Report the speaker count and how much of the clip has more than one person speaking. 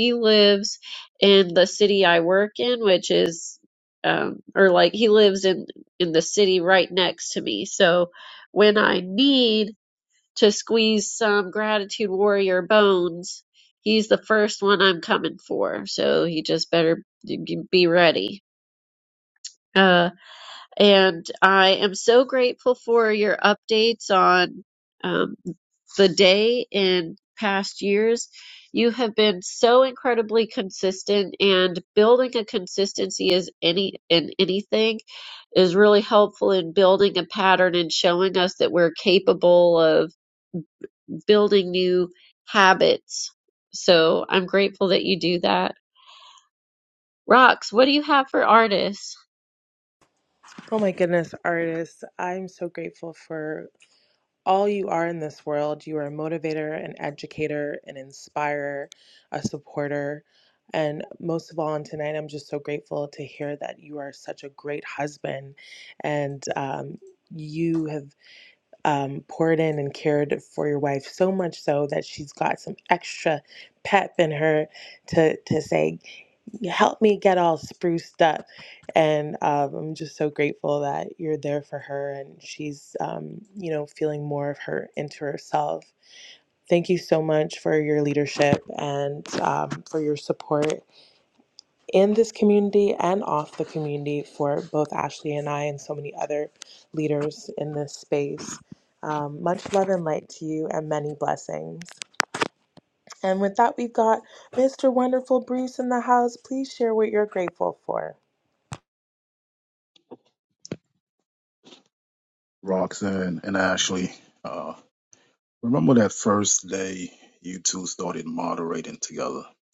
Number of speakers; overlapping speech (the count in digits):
3, no overlap